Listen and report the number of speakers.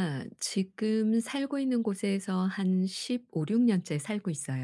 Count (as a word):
one